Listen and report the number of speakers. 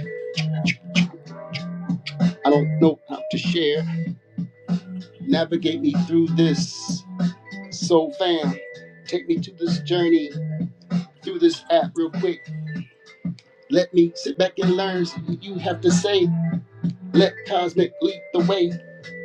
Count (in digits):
1